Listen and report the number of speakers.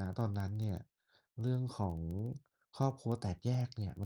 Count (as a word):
one